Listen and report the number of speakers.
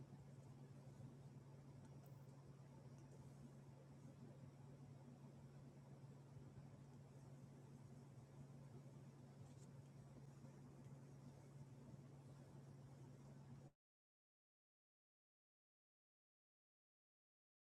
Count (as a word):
zero